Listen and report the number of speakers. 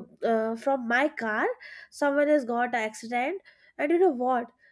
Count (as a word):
one